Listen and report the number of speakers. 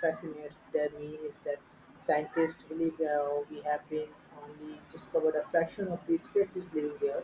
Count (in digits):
1